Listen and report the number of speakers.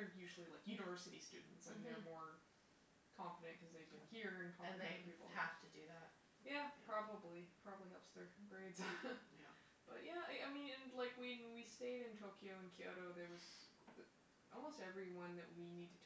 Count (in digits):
2